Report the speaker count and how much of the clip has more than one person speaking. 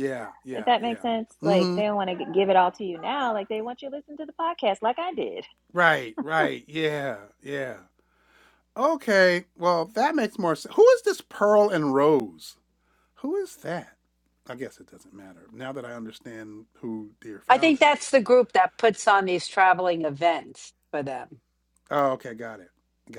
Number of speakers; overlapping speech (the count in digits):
3, about 6%